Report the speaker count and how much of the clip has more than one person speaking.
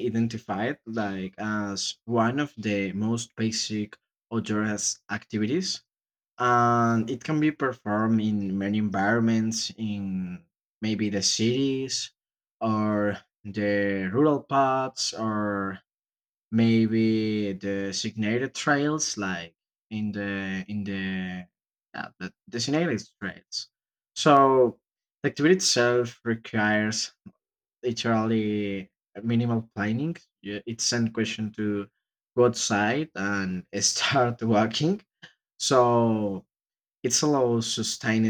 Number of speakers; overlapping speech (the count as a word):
one, no overlap